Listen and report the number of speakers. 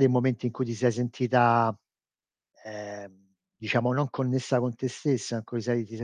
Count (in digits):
1